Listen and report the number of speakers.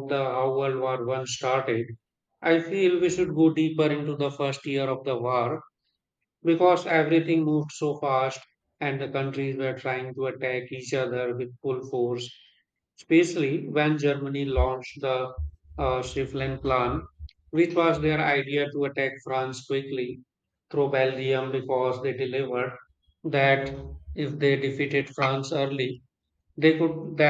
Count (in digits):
1